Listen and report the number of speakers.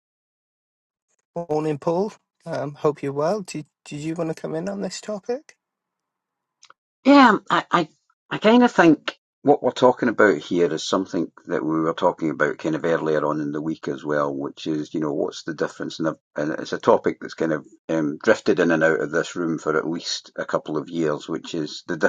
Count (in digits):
2